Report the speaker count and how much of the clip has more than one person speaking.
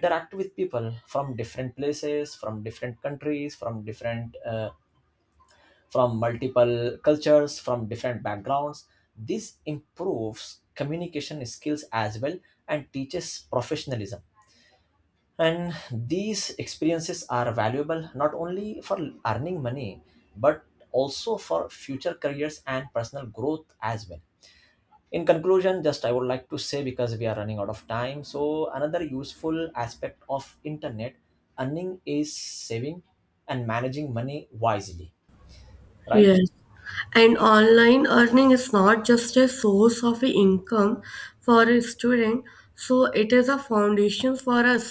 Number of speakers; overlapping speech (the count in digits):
2, about 1%